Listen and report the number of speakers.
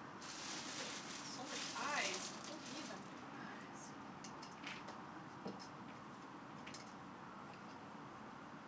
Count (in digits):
1